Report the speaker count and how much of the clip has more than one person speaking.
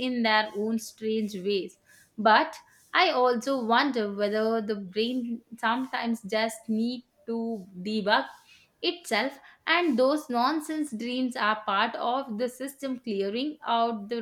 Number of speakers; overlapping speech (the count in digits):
1, no overlap